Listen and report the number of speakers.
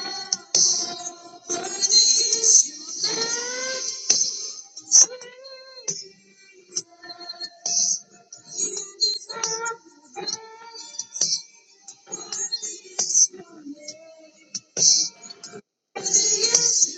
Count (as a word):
zero